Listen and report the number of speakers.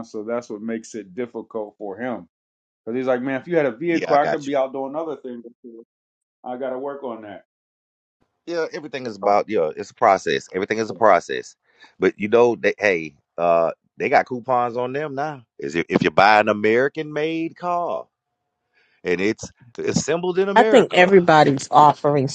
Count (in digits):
3